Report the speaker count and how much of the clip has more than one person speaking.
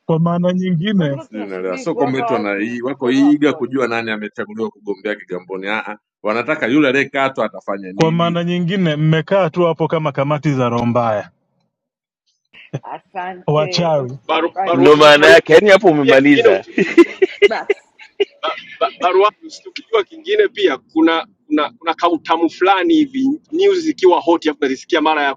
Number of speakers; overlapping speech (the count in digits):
5, about 20%